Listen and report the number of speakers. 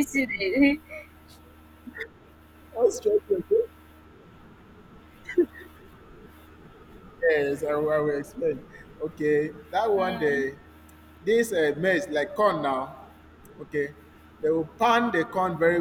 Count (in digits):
2